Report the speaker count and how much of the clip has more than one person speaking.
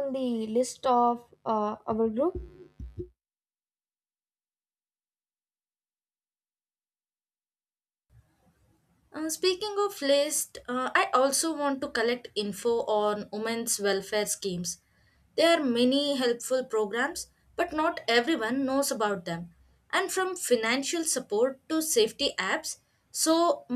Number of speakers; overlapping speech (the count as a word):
two, no overlap